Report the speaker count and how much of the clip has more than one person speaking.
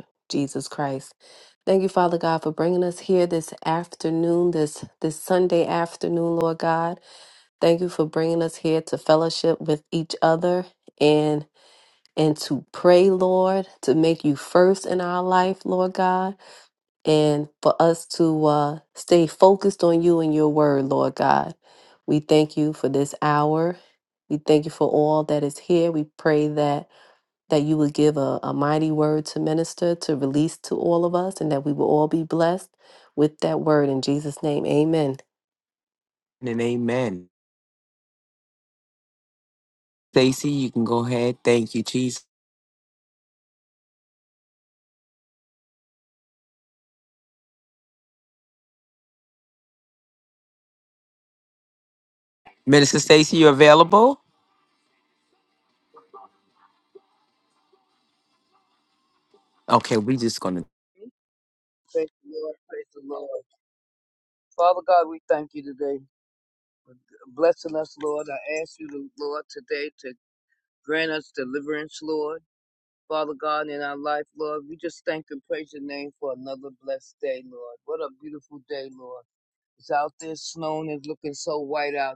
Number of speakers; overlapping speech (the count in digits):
3, no overlap